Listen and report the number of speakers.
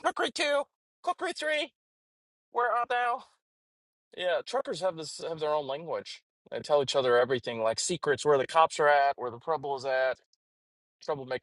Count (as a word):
one